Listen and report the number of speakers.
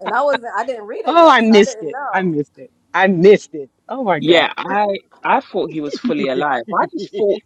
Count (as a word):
three